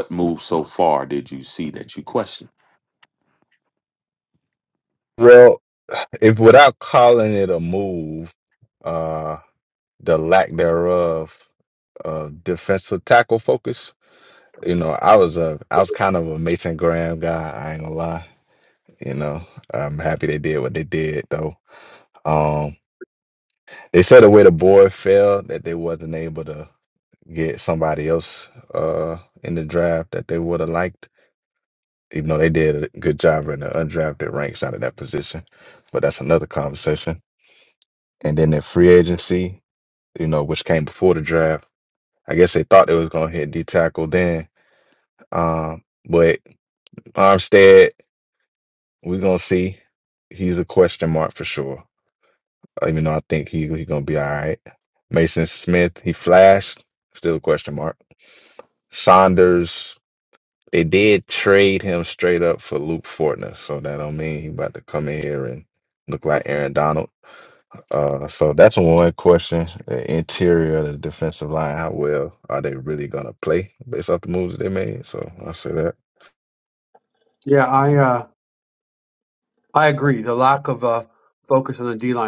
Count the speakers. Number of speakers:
three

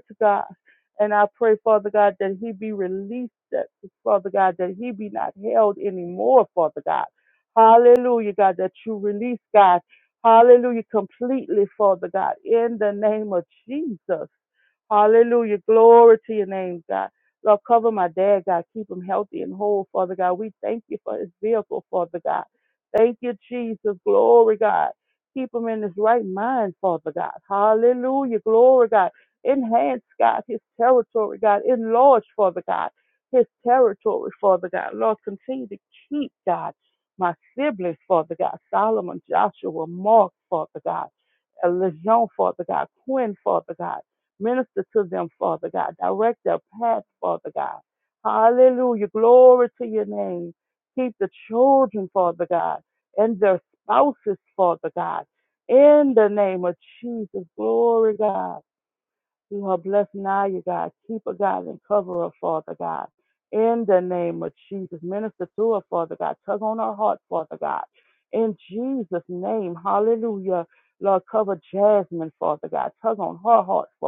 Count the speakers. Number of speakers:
one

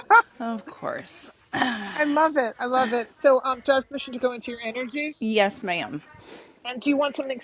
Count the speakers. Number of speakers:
two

